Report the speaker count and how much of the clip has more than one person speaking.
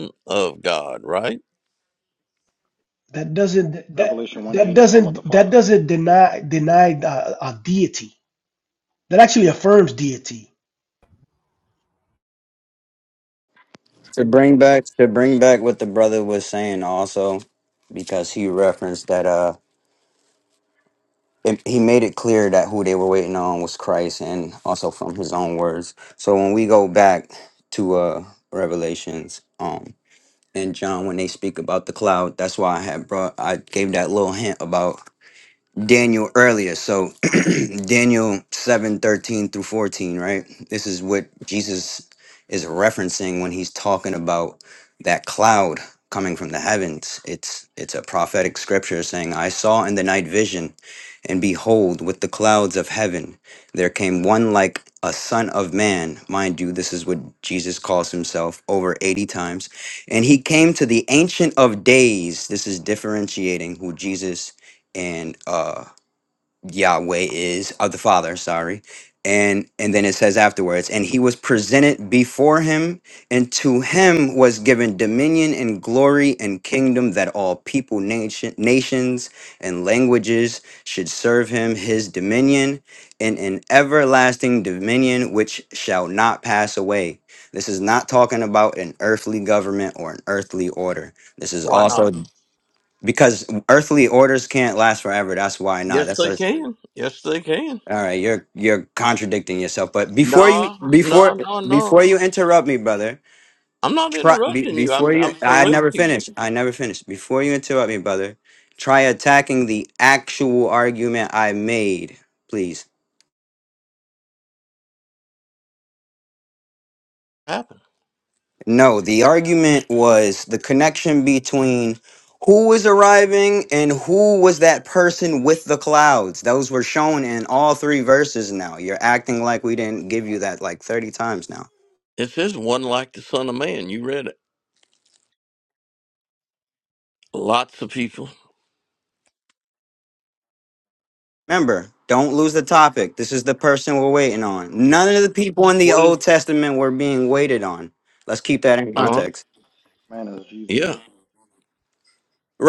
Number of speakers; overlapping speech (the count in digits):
4, about 5%